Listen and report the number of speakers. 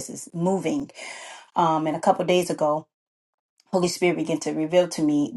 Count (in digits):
1